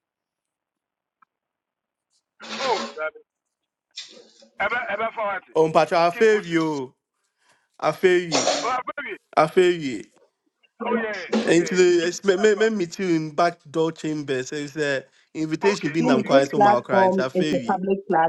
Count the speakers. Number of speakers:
3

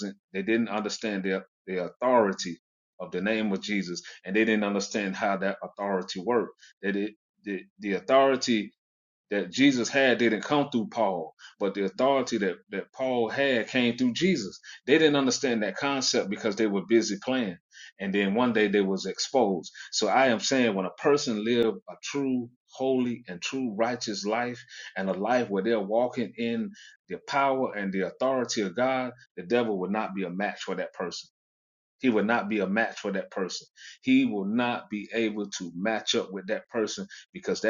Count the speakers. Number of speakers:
1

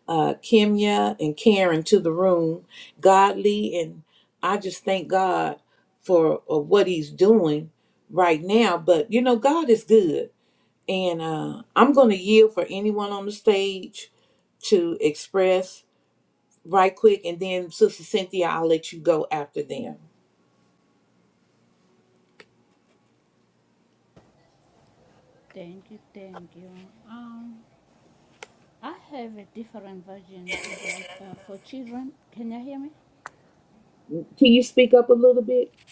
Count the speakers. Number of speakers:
2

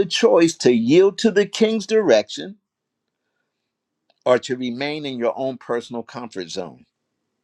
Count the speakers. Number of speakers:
1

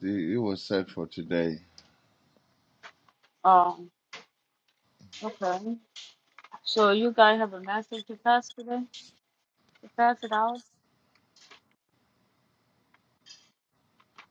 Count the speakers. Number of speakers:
2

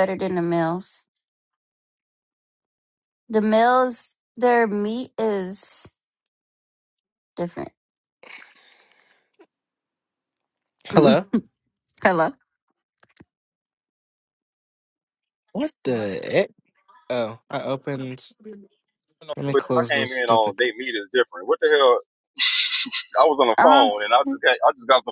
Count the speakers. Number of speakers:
3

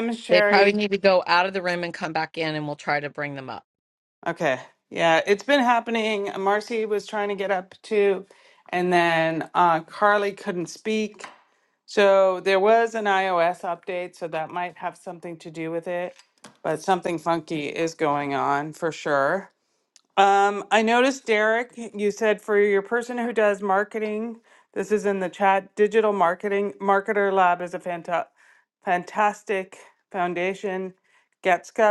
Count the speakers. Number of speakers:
2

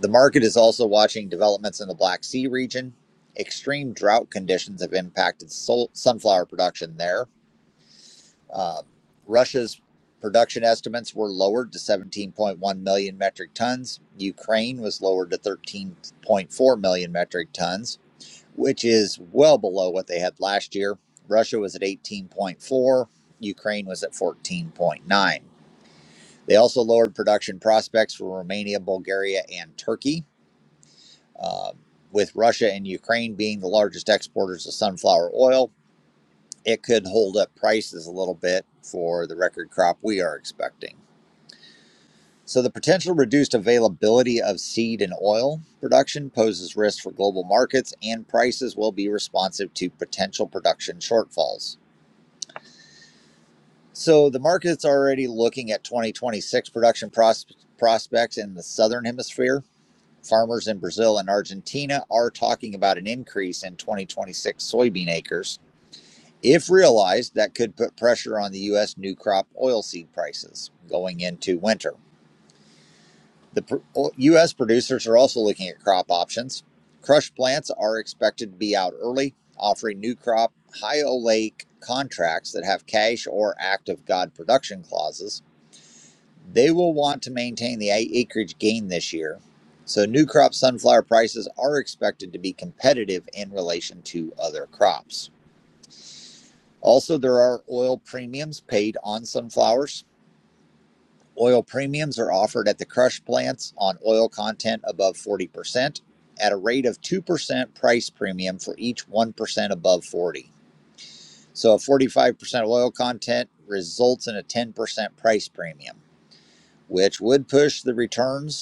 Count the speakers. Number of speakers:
1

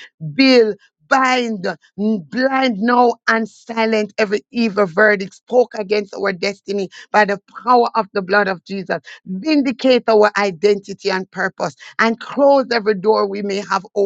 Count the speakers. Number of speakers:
1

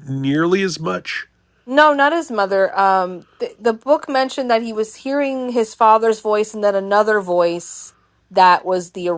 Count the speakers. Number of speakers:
2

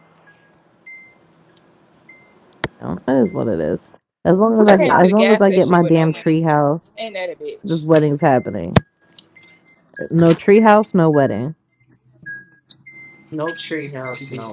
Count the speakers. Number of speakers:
3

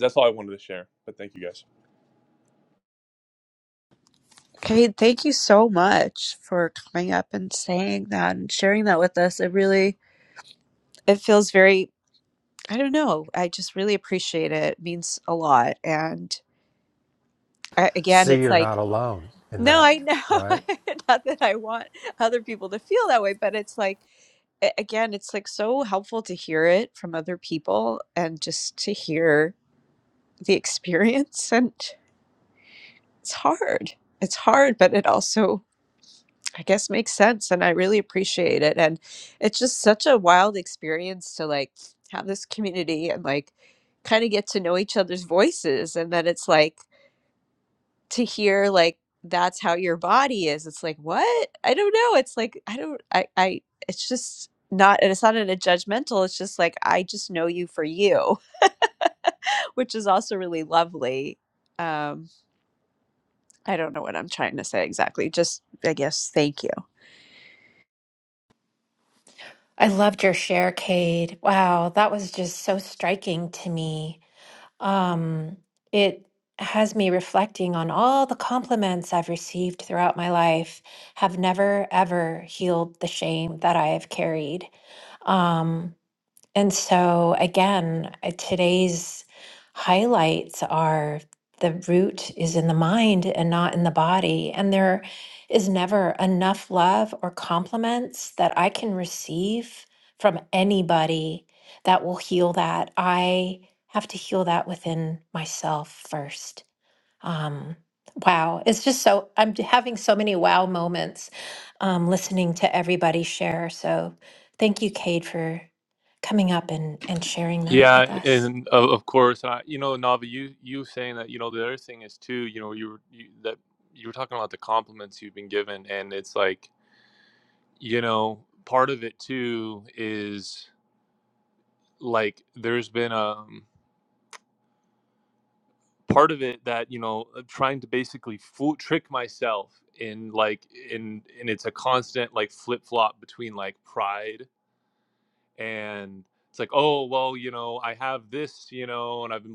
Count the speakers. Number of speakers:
4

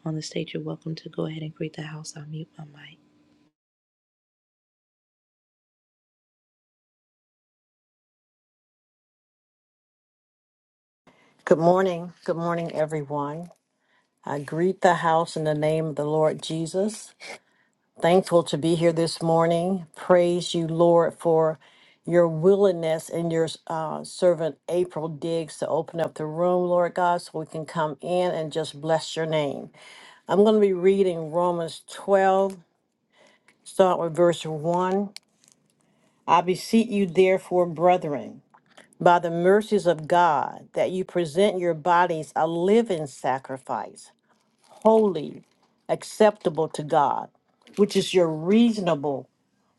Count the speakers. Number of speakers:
2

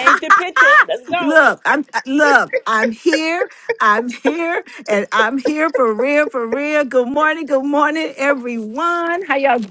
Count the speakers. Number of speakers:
2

